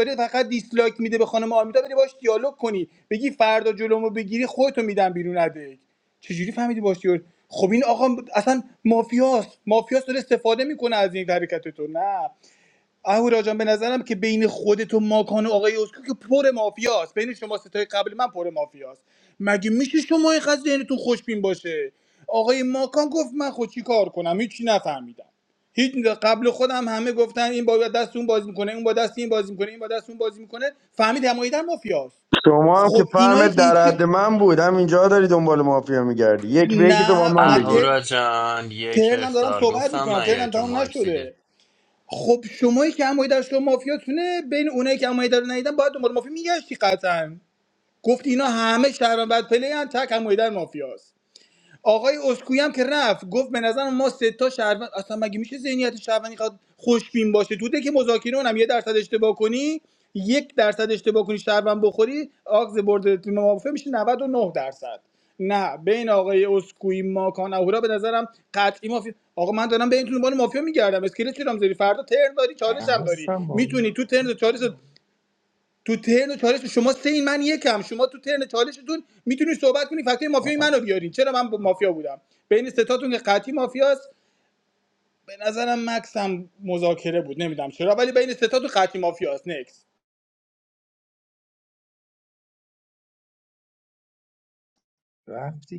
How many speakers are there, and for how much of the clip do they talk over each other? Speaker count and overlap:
4, about 6%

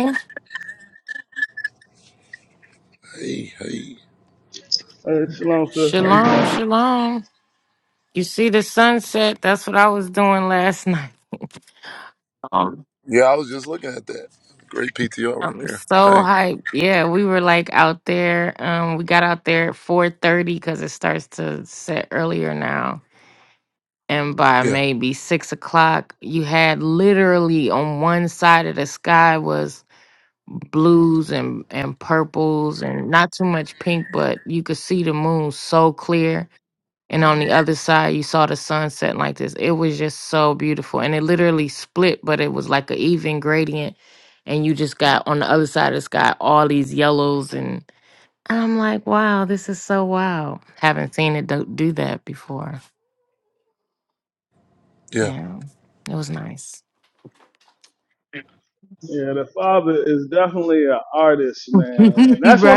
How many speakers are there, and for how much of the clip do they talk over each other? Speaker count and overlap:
3, about 3%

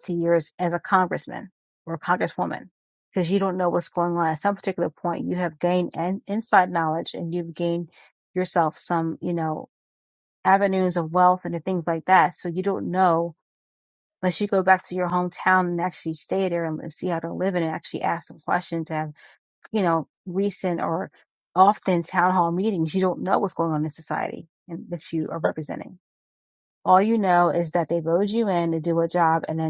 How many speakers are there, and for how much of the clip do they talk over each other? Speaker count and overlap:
1, no overlap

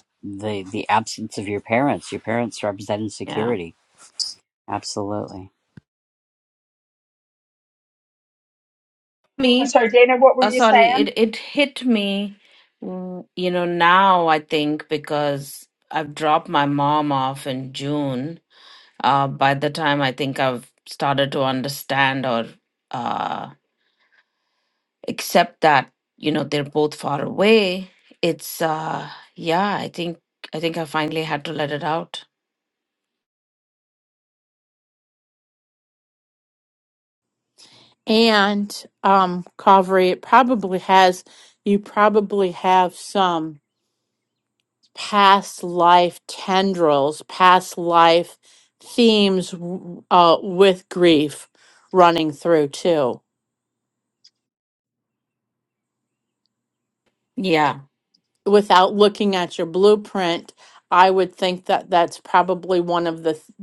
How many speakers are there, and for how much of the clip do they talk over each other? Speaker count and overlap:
4, about 2%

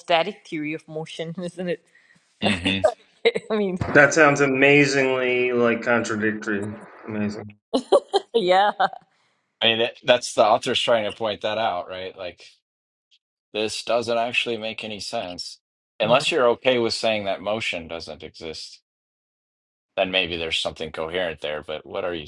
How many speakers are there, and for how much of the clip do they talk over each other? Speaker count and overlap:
3, about 1%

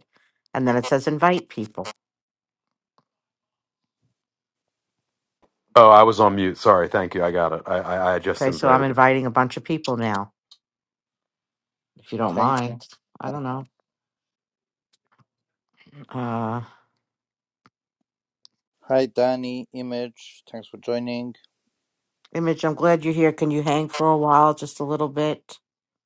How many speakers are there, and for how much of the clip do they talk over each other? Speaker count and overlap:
3, about 4%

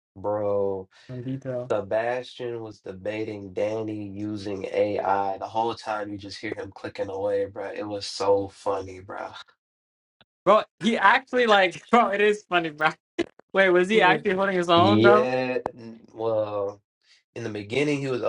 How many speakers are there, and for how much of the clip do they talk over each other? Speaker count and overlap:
2, about 5%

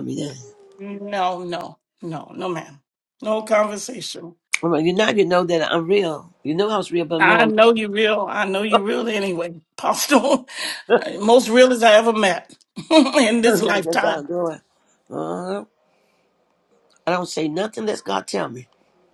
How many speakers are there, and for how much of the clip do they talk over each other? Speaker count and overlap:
2, about 6%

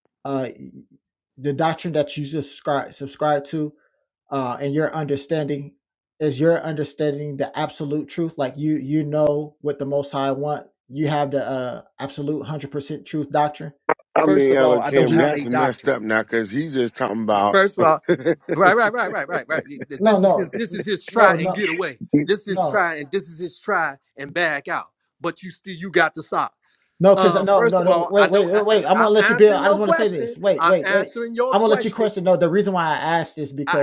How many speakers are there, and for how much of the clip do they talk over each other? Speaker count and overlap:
3, about 23%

